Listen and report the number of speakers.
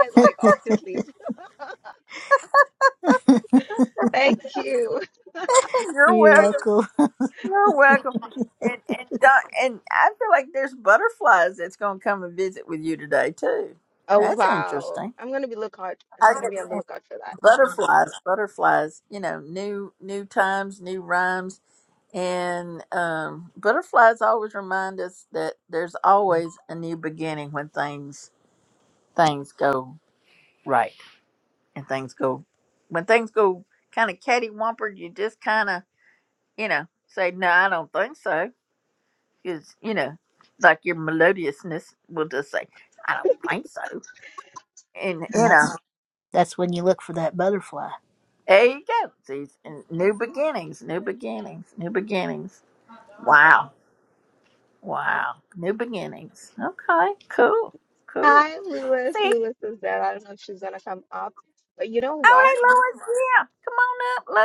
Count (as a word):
three